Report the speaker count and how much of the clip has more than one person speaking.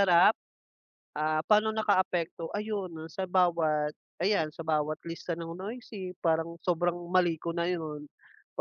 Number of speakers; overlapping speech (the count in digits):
1, no overlap